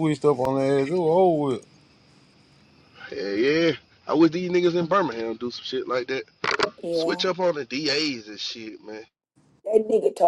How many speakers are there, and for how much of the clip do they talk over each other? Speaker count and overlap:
3, about 4%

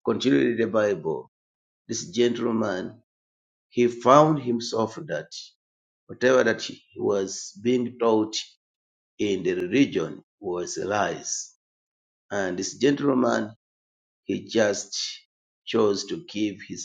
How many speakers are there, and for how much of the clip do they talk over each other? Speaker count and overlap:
1, no overlap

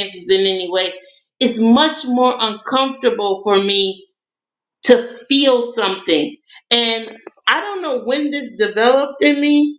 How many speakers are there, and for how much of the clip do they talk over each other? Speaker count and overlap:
1, no overlap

